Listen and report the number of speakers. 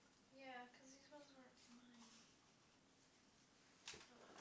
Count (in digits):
1